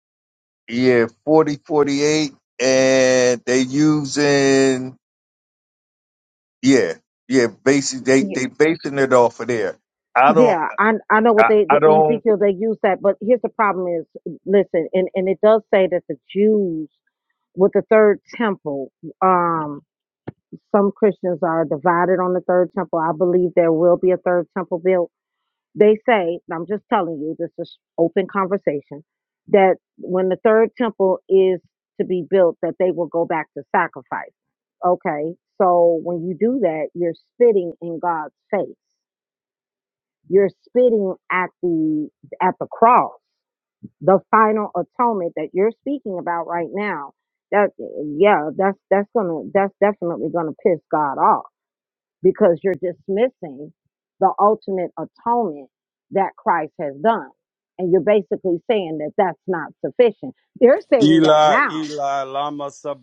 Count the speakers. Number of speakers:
three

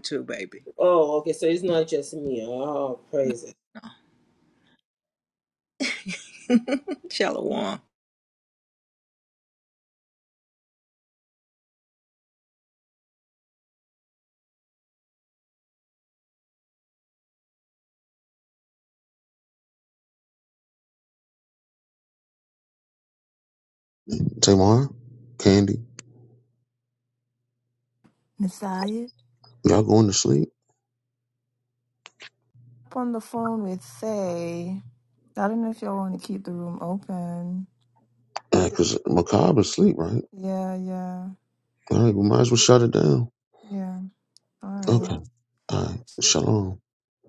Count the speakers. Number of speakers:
four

